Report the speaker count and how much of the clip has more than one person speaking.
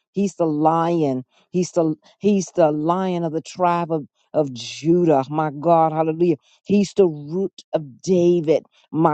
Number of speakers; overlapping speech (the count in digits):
1, no overlap